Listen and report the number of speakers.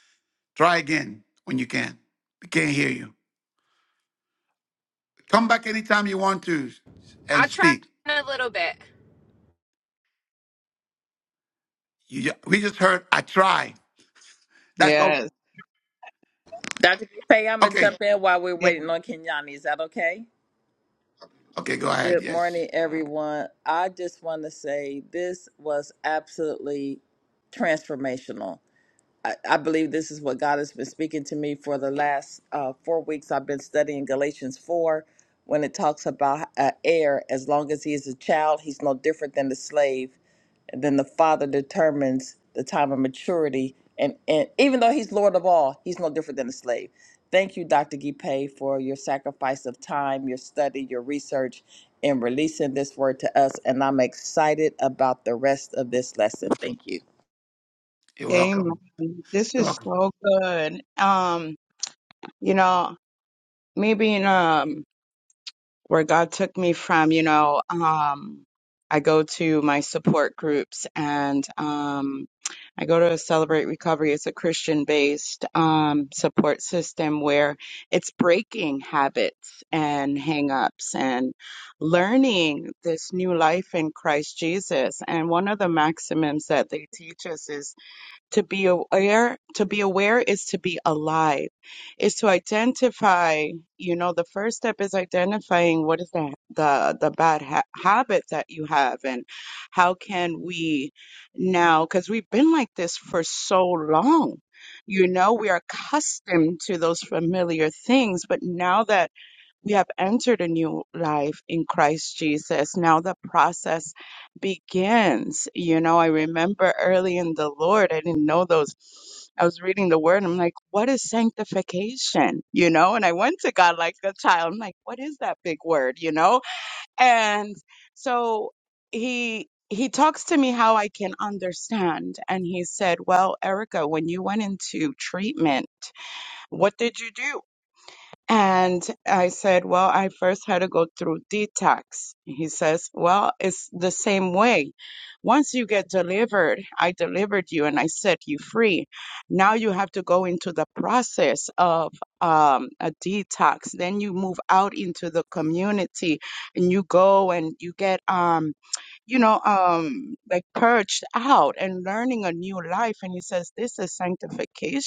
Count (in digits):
4